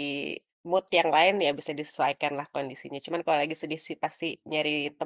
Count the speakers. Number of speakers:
1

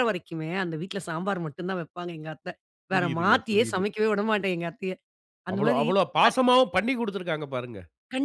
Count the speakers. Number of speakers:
2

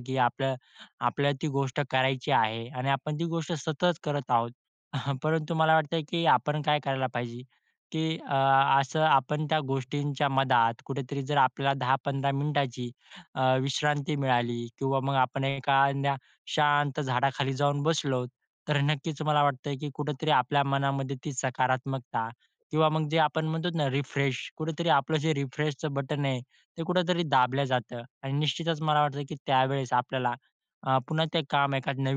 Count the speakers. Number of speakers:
1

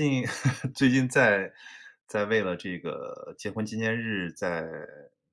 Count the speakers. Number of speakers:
1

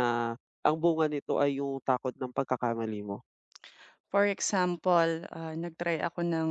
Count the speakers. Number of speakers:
2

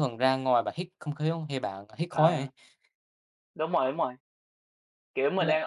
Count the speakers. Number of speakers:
2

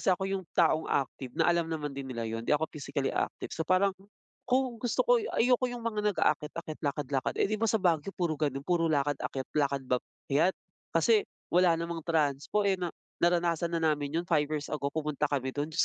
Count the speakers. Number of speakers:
1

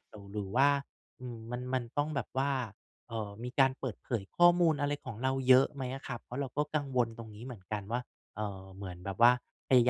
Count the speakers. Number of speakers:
1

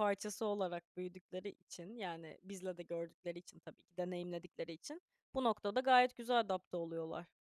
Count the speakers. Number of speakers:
1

